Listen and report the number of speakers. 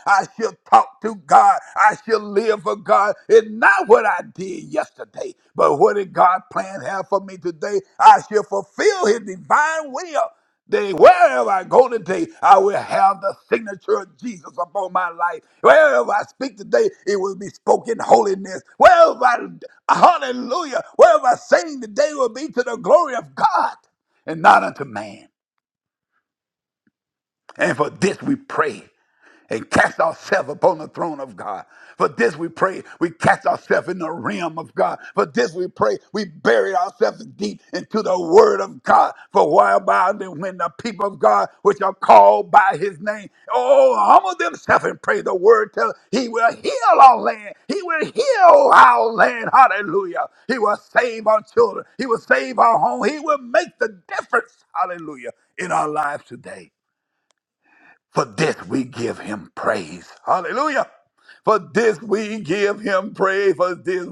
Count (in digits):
1